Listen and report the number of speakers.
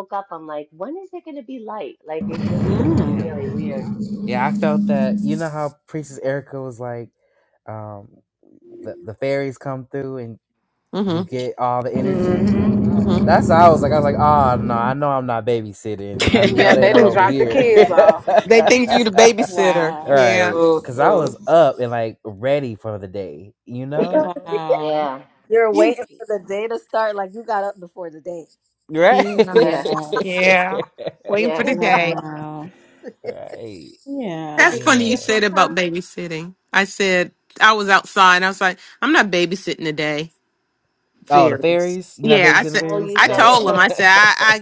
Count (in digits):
6